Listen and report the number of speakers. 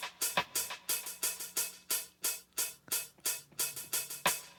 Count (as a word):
zero